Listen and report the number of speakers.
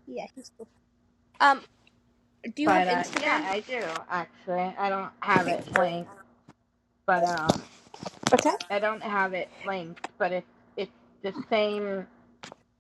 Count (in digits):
2